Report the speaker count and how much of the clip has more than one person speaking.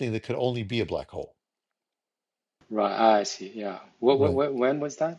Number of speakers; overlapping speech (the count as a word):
two, about 4%